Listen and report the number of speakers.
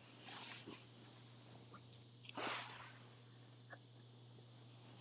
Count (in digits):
0